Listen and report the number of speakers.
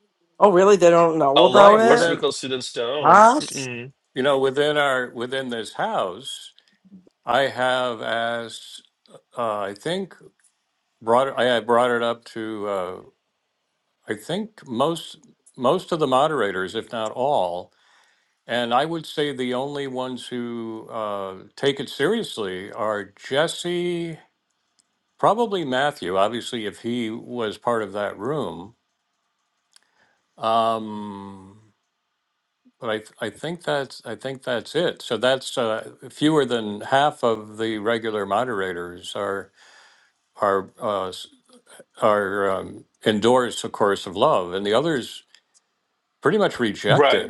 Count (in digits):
3